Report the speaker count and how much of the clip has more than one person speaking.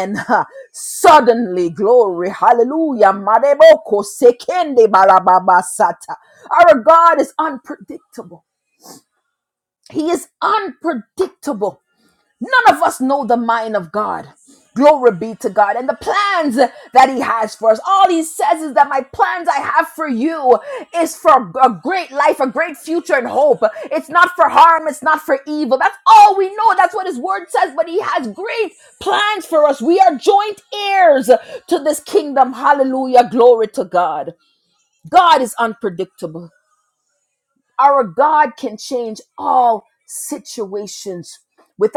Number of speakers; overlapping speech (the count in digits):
1, no overlap